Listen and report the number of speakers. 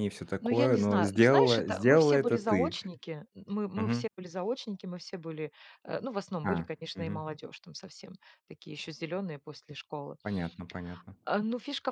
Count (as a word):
two